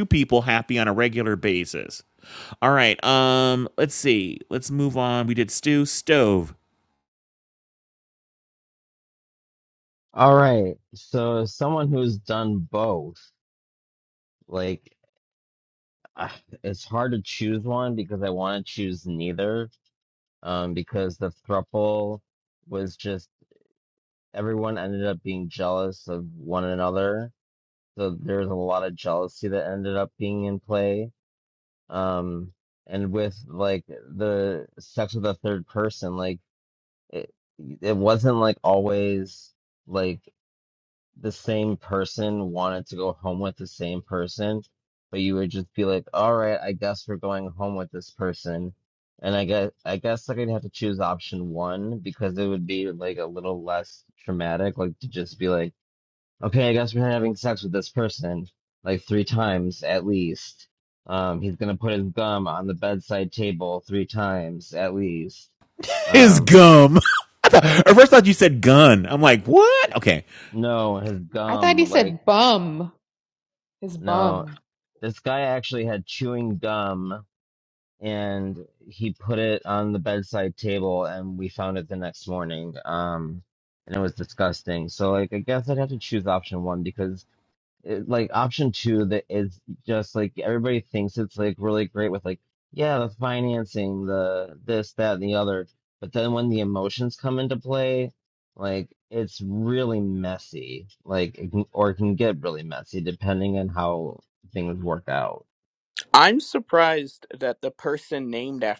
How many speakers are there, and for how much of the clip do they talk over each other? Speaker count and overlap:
4, about 1%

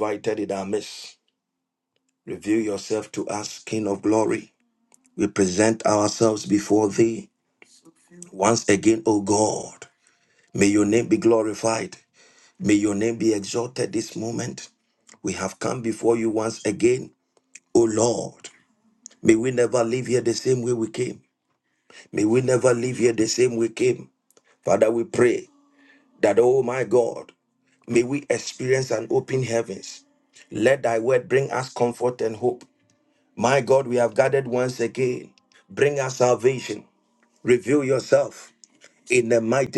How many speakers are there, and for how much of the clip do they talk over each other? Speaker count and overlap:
1, no overlap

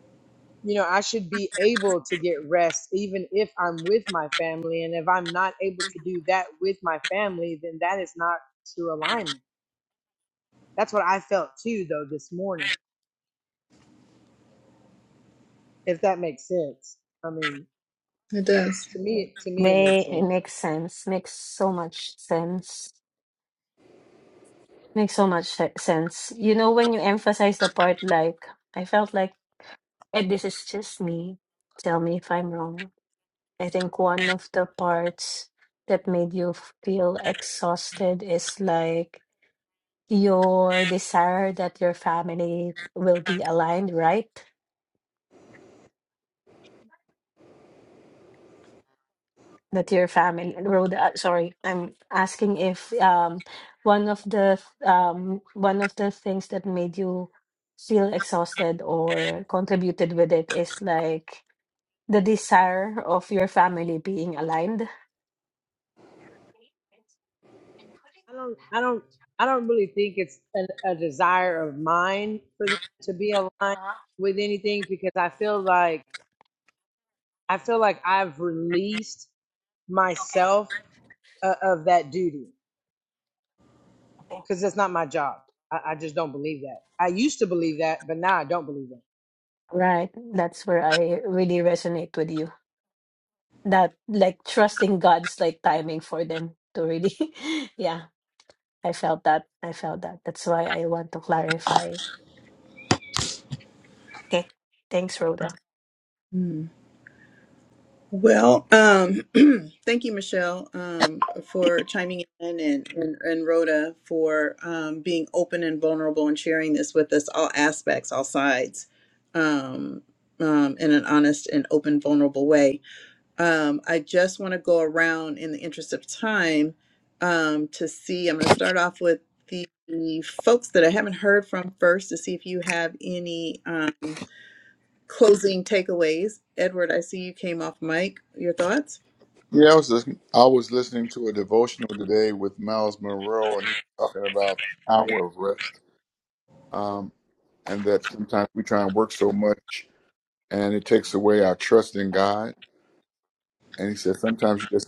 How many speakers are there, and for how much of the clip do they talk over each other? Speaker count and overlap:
4, about 1%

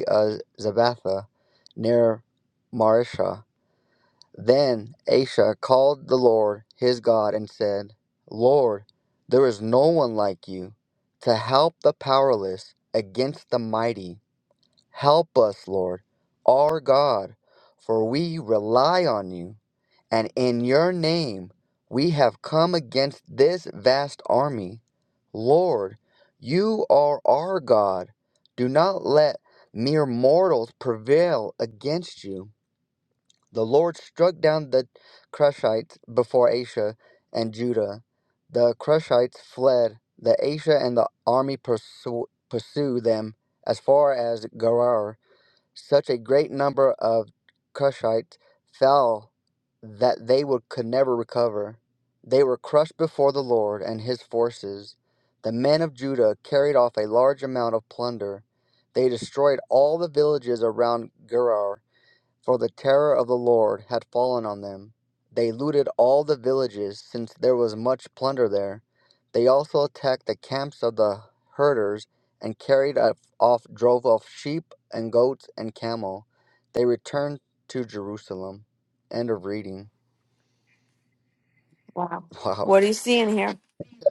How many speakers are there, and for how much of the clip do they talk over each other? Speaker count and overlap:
2, under 1%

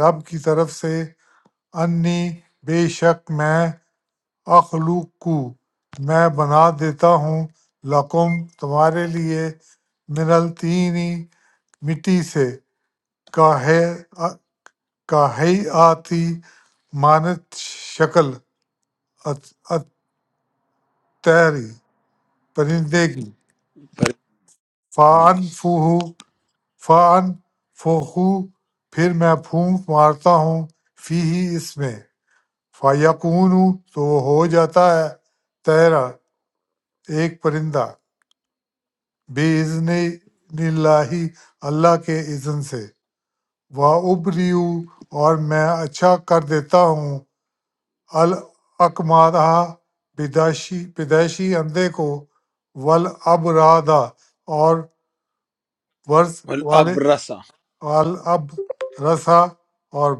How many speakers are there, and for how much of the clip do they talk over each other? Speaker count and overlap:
2, about 1%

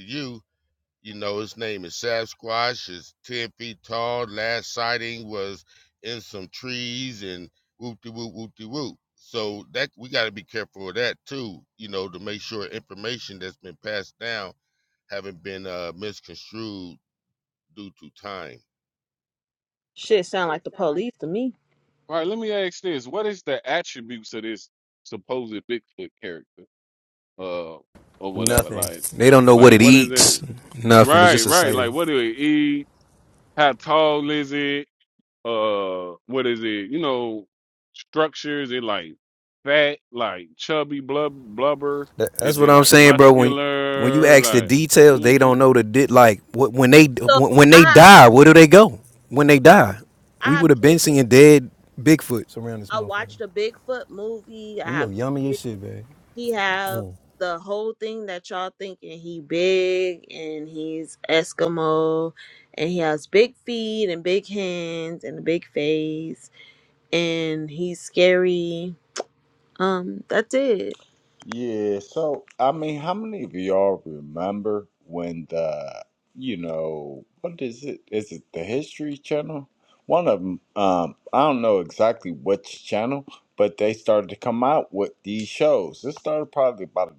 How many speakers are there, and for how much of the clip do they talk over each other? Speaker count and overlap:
5, about 7%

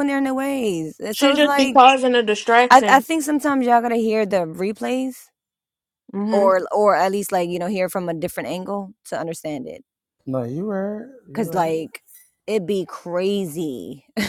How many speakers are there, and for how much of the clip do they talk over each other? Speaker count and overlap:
3, about 11%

